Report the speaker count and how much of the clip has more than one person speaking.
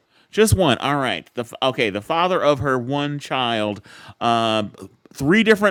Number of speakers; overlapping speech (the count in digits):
1, no overlap